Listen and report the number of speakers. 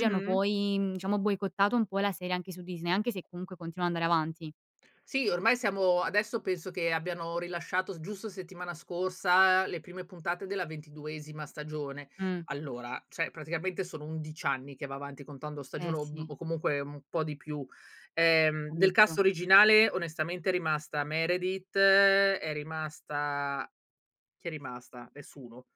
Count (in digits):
2